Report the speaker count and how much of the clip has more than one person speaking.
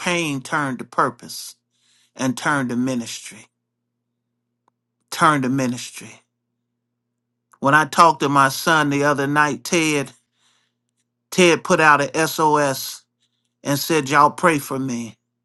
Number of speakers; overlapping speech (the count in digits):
1, no overlap